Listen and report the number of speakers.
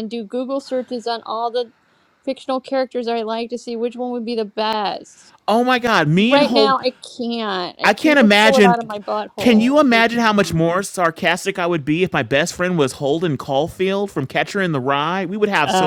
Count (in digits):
2